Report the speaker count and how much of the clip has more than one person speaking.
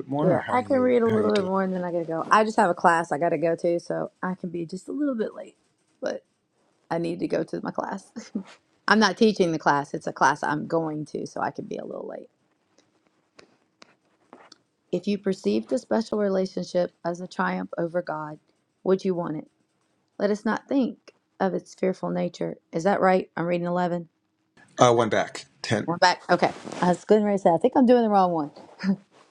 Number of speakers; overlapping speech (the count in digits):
2, about 4%